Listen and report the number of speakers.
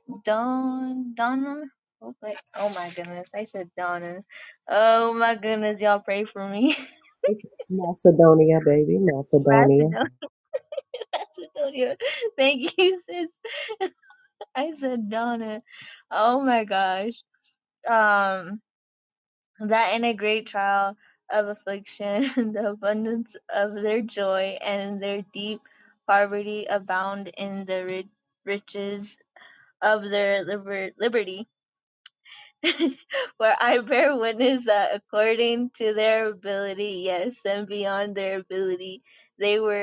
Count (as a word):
two